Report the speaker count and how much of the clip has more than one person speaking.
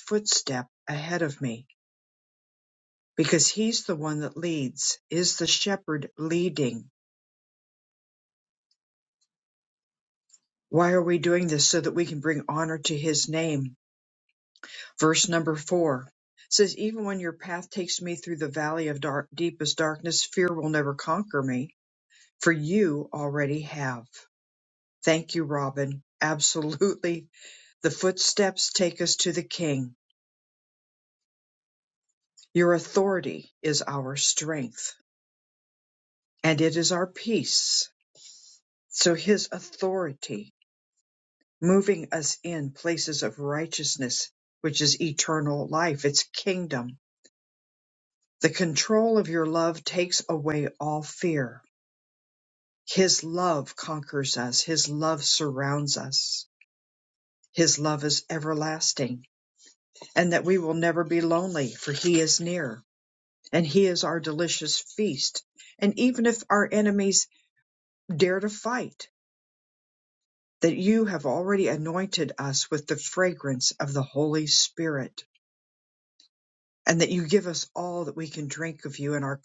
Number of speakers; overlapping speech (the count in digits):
1, no overlap